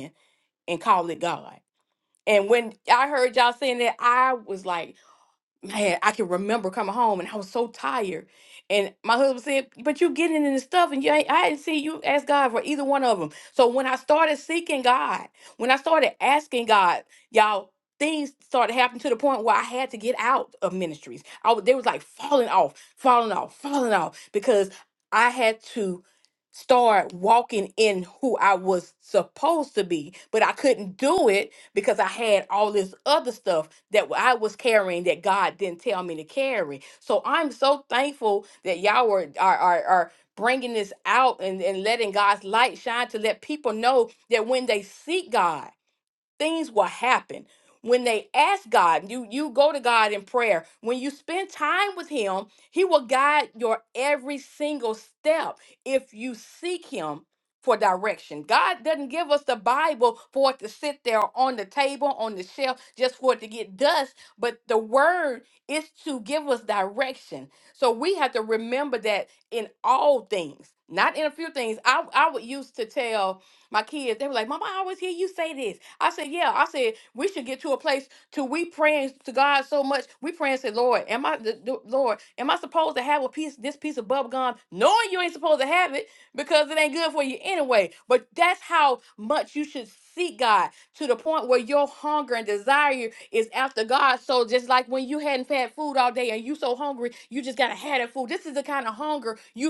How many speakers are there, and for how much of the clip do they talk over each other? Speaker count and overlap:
one, no overlap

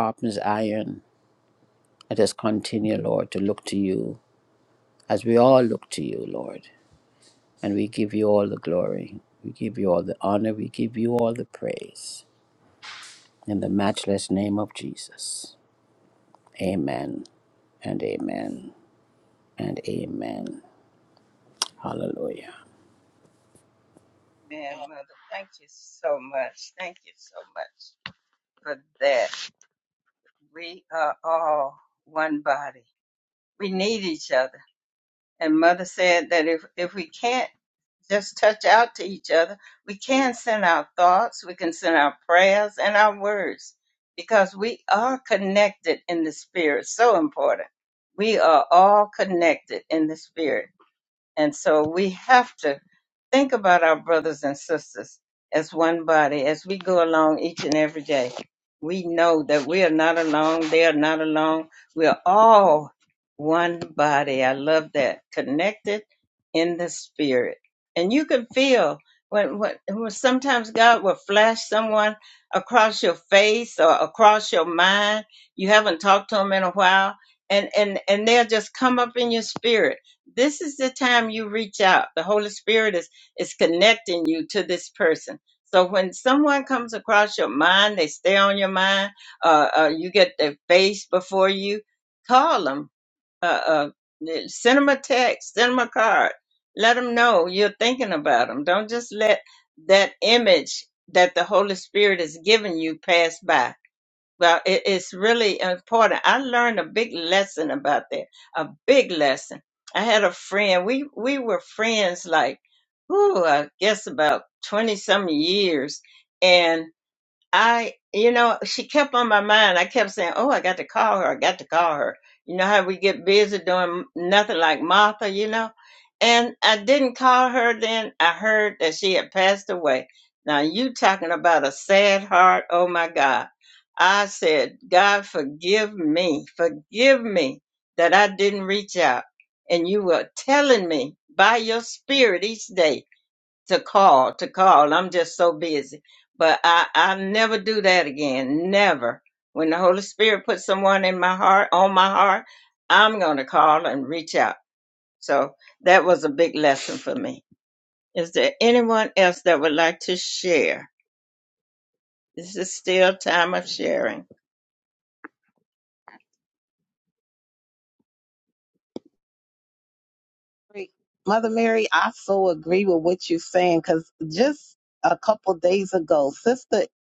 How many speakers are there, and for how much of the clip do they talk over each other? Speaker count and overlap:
three, no overlap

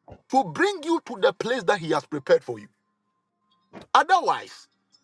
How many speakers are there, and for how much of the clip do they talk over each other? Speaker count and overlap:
one, no overlap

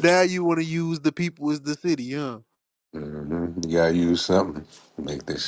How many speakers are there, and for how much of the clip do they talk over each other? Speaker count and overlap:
two, no overlap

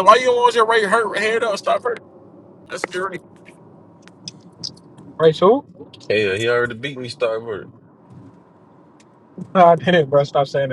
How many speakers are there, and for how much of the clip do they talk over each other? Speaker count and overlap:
three, no overlap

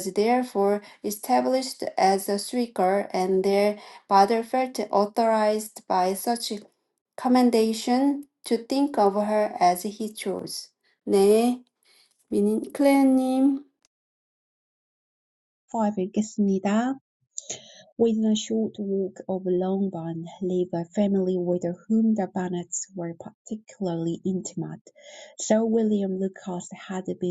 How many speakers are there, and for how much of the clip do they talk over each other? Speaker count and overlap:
two, no overlap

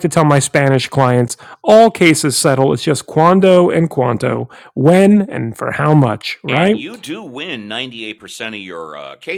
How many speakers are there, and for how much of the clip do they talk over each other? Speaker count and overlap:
two, about 3%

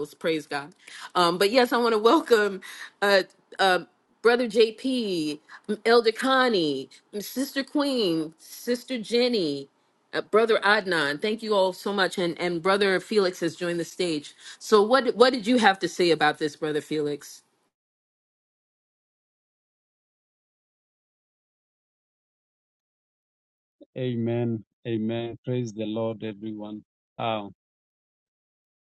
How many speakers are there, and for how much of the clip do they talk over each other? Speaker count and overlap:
two, no overlap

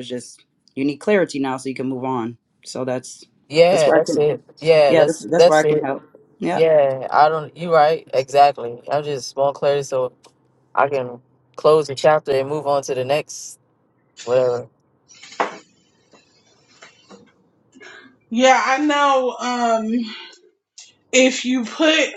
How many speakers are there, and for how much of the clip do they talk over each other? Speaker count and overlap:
three, about 8%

